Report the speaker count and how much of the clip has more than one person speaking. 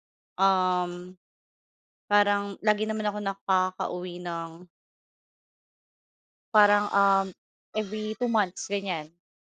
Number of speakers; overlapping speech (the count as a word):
one, no overlap